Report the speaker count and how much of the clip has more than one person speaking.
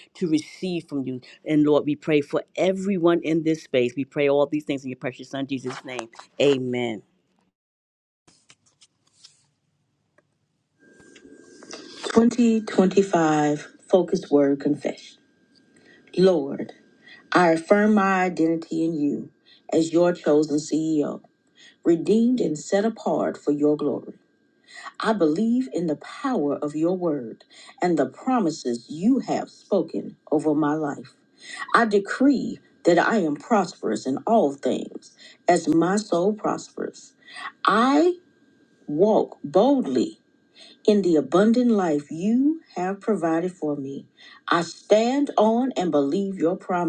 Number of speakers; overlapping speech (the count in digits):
2, no overlap